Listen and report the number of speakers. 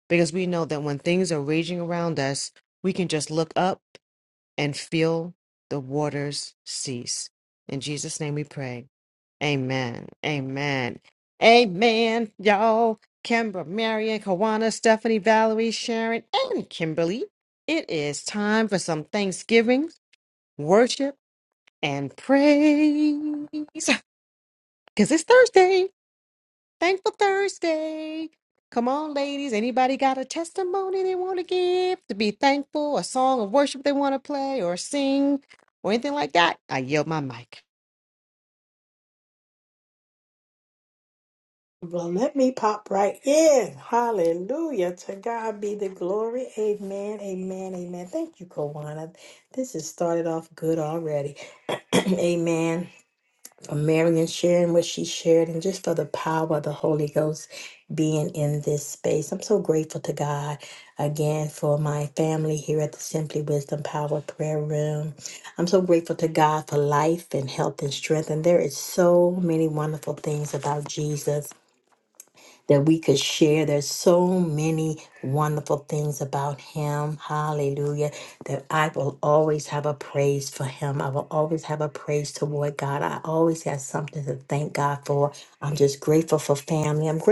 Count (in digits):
2